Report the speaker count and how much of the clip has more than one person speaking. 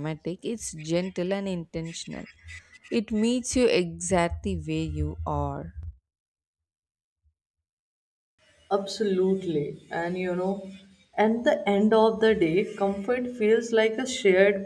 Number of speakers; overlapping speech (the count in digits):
2, no overlap